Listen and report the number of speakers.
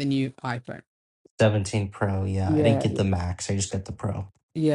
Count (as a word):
two